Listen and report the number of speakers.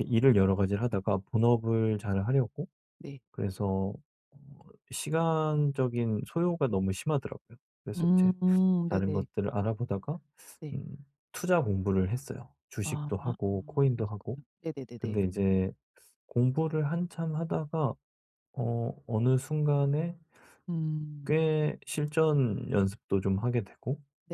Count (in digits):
2